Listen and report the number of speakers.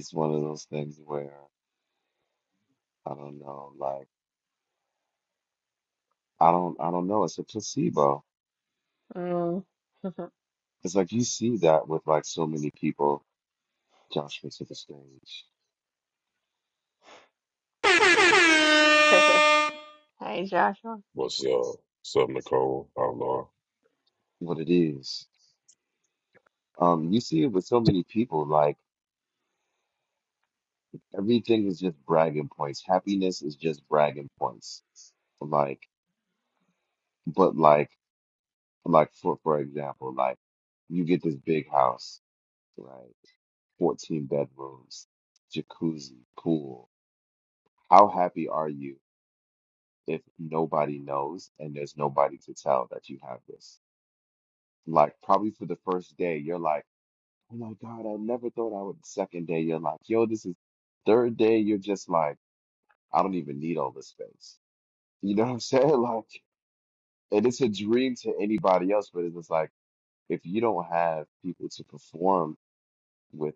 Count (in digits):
3